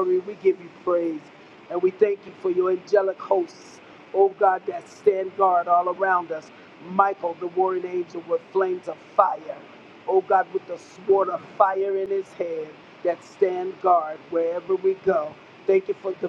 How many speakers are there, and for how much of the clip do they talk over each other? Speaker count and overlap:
1, no overlap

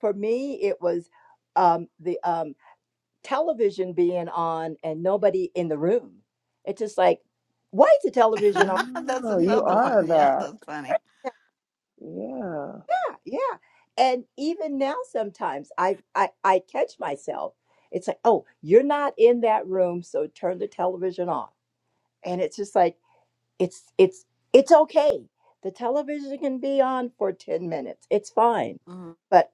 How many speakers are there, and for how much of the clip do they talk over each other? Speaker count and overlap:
3, about 6%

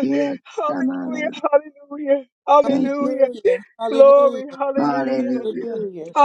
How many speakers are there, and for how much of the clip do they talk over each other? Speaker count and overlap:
3, about 51%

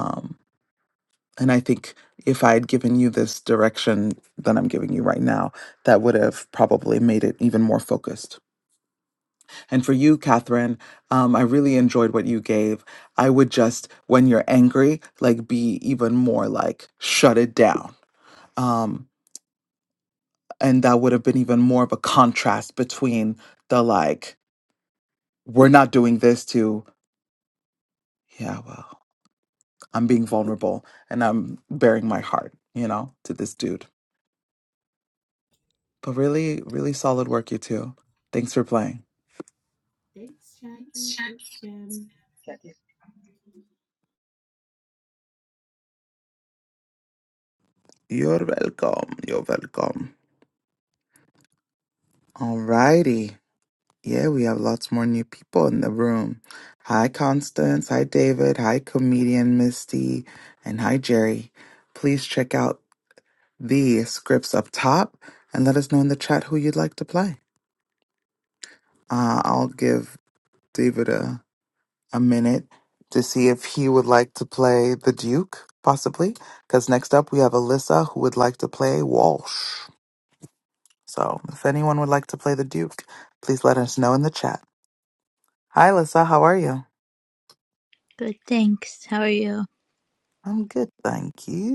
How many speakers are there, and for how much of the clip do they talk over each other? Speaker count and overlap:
3, no overlap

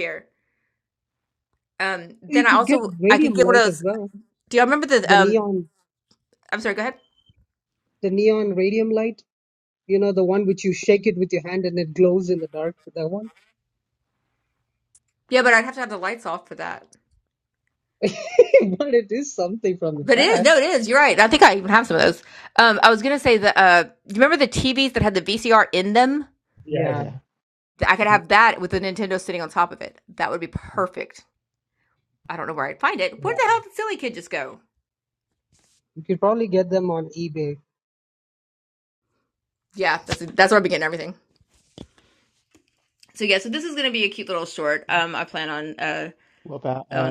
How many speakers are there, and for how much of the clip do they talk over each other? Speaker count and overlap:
3, about 6%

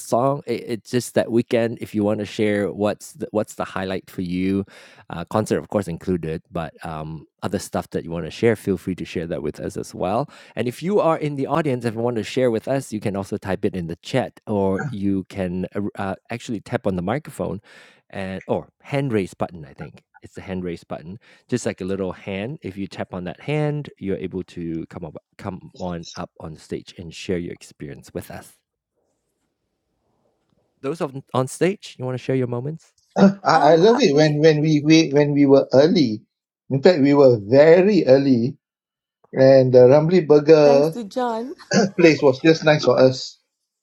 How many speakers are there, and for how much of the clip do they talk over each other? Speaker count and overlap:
3, about 3%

